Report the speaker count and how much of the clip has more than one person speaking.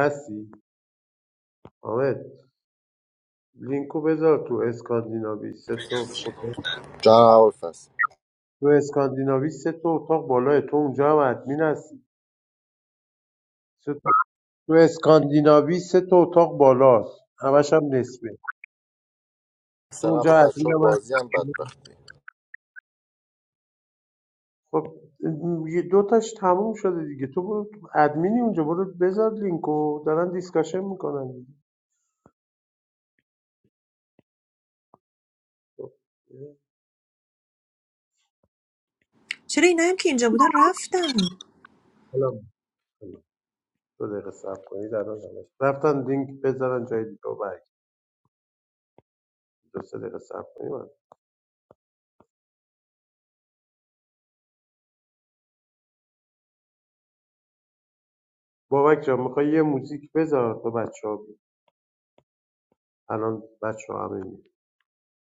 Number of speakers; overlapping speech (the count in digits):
3, about 2%